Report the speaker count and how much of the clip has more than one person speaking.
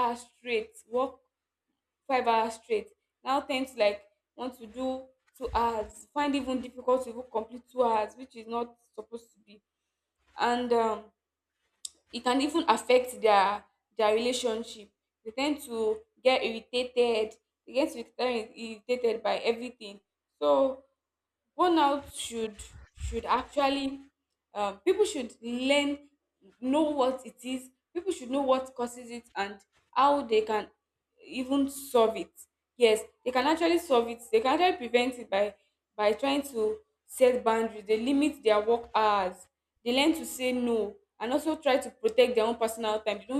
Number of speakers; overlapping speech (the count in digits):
1, no overlap